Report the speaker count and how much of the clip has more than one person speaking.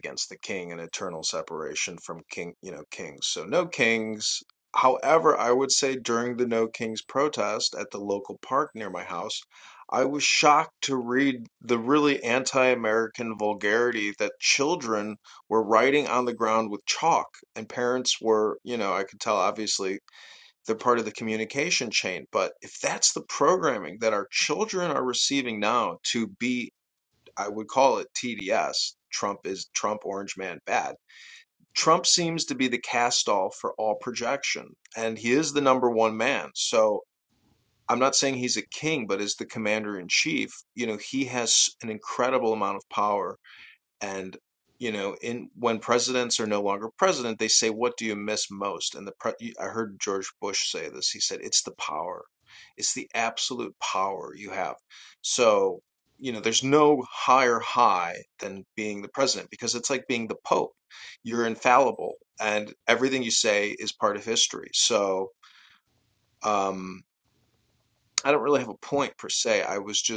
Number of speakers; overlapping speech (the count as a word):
one, no overlap